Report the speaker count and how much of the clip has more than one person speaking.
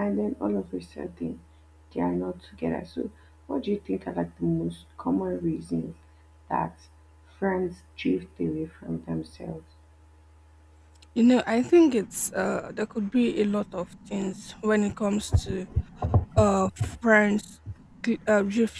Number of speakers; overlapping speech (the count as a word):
two, no overlap